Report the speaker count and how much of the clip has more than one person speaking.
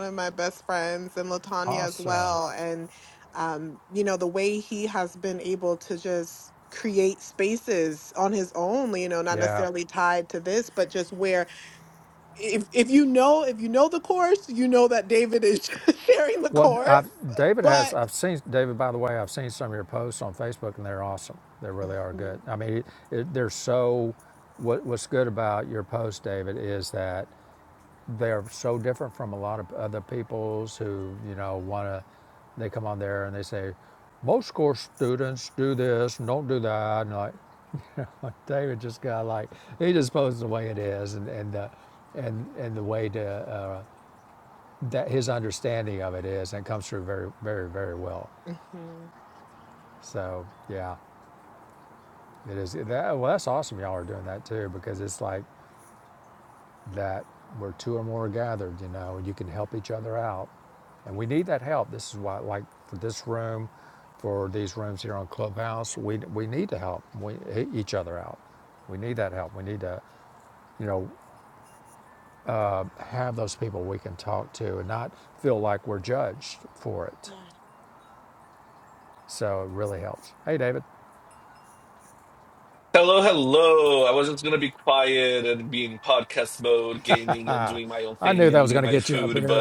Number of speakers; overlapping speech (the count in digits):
3, about 4%